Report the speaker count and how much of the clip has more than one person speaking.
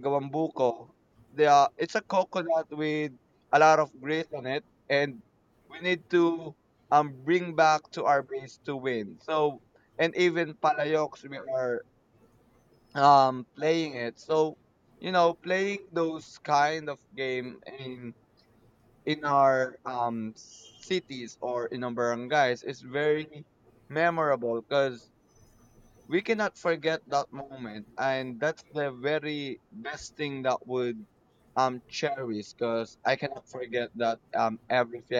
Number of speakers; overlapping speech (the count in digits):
1, no overlap